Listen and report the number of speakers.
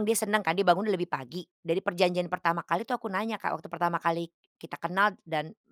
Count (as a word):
one